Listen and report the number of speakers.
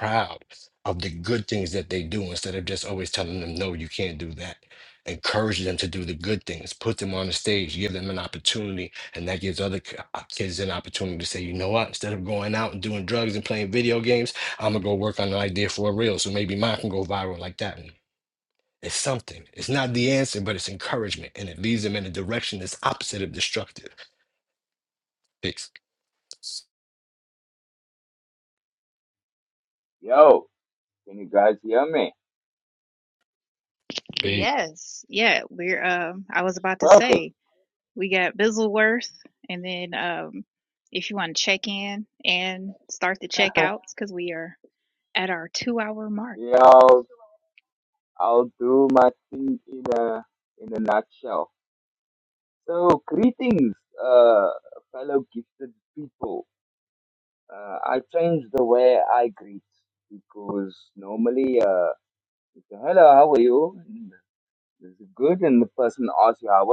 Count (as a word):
three